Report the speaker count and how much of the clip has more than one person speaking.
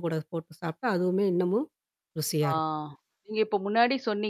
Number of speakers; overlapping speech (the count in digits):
2, about 3%